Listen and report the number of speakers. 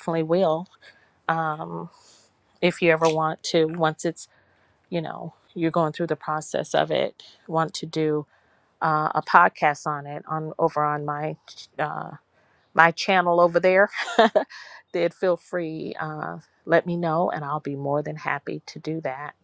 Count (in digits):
1